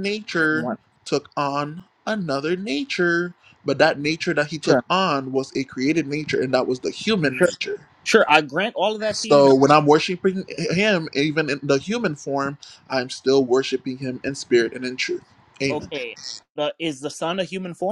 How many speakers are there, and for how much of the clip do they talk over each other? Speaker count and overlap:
2, about 7%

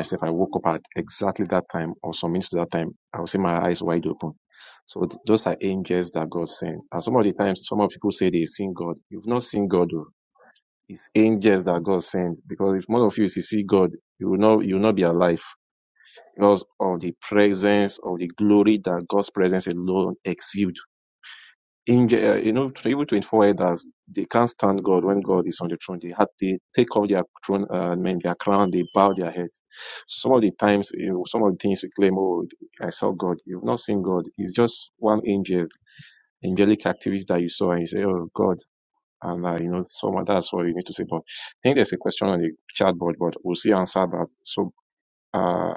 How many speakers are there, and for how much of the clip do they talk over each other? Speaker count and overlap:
1, no overlap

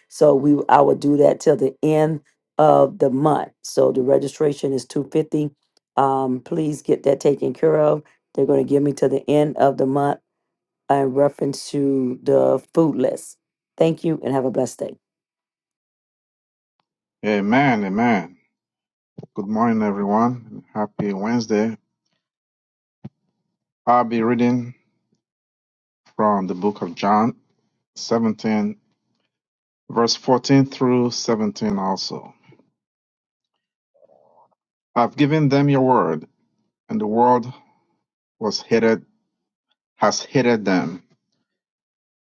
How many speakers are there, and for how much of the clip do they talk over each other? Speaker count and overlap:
2, no overlap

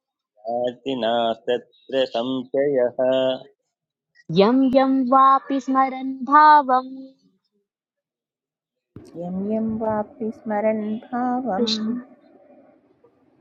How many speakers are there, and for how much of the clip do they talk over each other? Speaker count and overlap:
3, about 1%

